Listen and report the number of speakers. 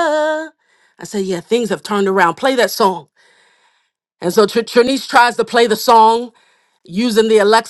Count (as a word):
one